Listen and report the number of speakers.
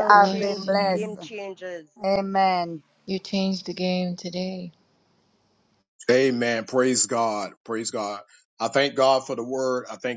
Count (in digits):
4